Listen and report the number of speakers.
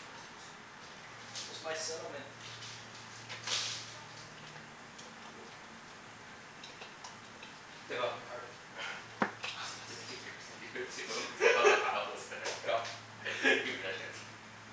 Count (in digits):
2